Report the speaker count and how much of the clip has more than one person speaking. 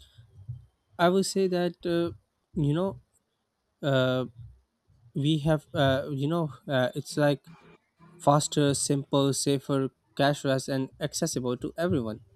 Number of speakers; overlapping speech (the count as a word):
one, no overlap